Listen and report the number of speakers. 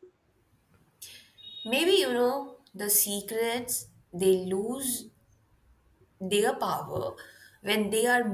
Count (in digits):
1